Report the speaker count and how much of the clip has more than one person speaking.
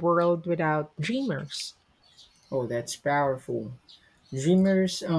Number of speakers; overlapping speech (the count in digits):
2, no overlap